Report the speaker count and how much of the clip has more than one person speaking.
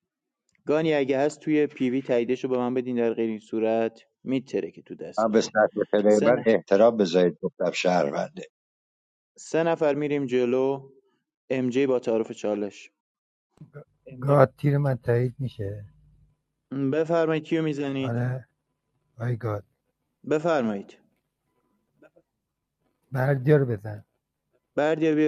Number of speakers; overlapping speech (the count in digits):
3, about 3%